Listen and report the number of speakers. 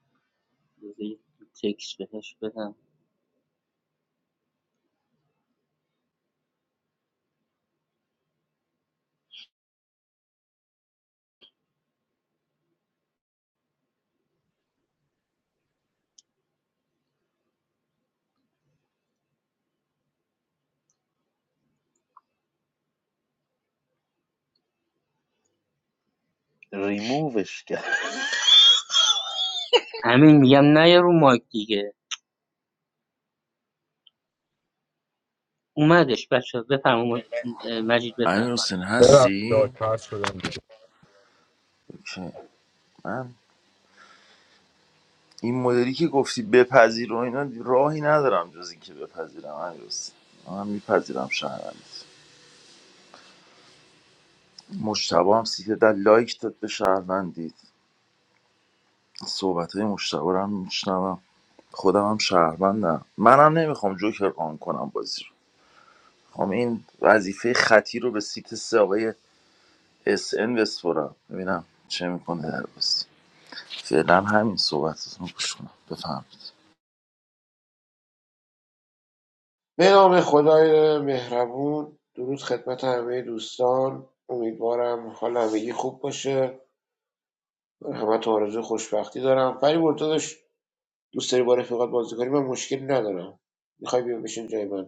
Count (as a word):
five